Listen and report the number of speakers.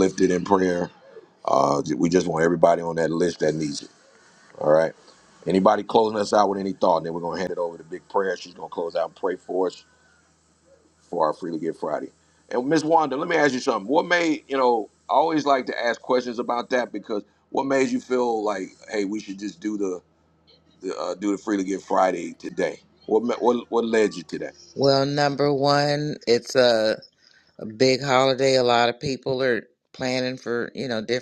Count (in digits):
2